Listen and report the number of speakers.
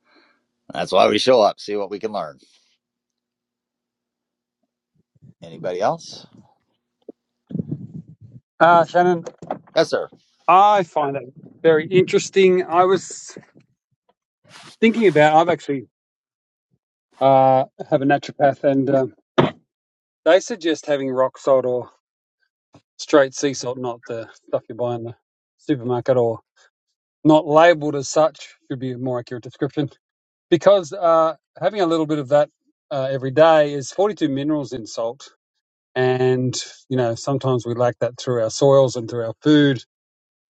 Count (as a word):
two